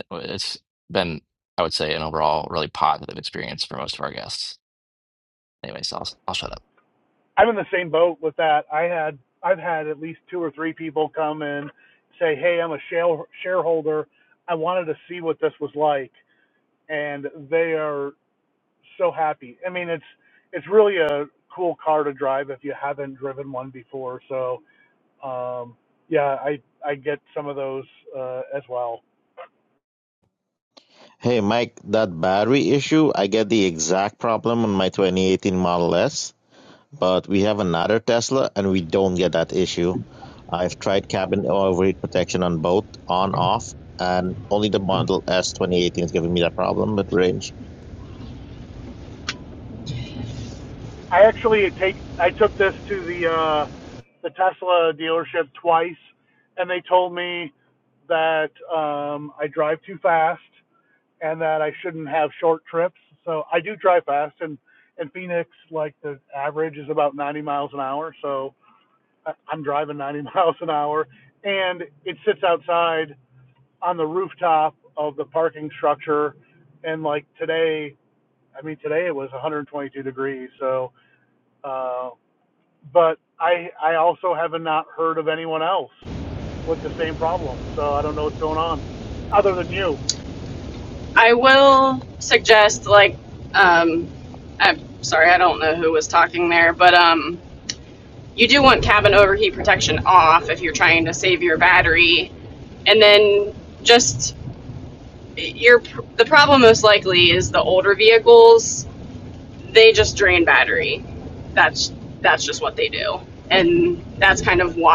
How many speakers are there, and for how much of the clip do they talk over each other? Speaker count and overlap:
4, no overlap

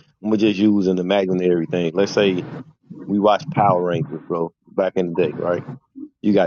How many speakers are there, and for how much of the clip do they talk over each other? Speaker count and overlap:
1, no overlap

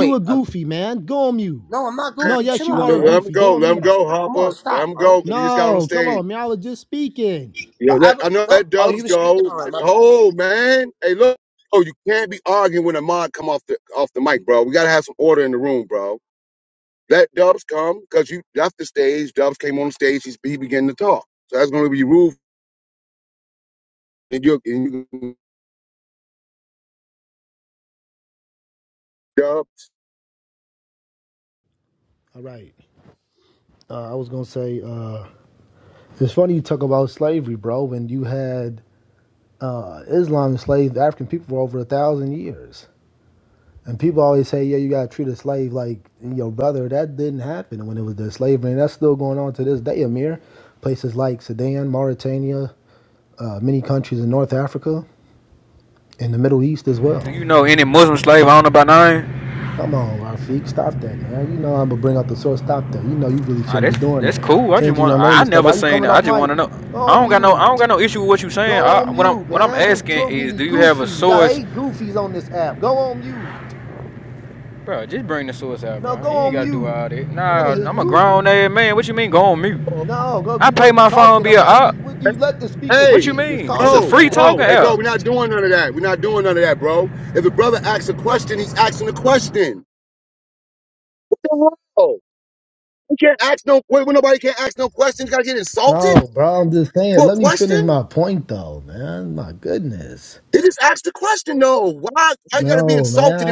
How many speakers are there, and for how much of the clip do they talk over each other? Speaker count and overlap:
4, about 19%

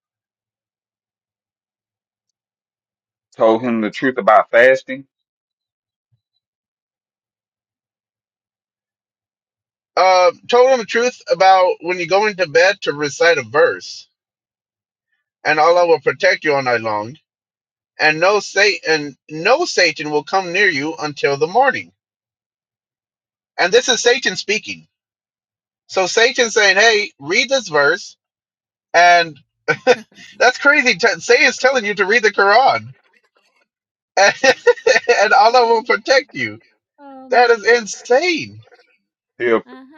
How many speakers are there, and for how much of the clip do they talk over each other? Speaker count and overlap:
3, about 2%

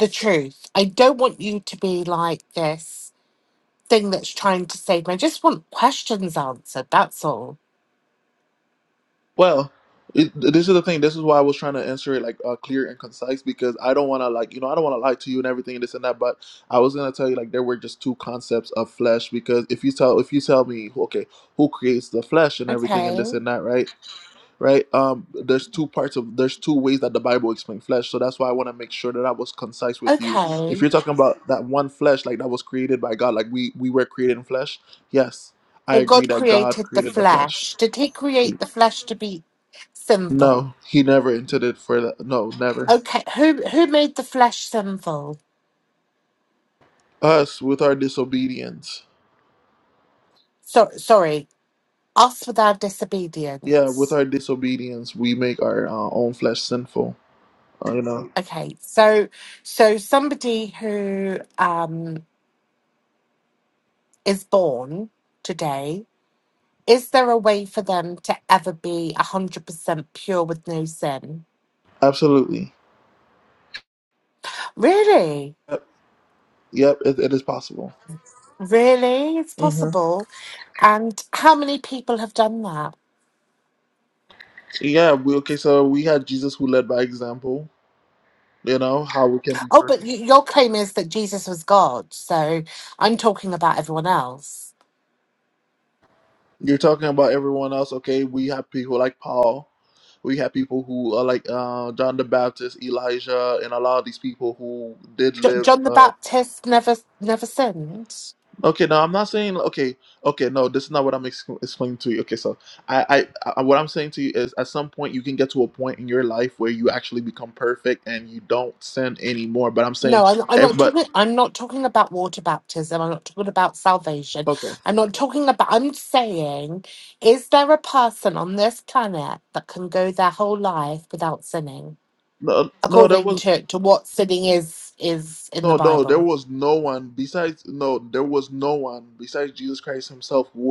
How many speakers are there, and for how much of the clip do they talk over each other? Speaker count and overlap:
2, about 5%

